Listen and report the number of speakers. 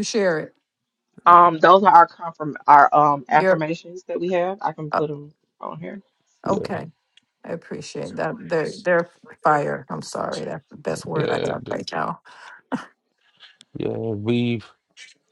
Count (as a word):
three